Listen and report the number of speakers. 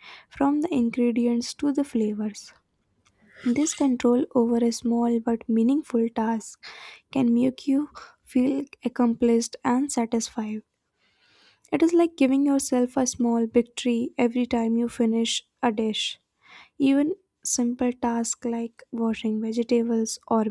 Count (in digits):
1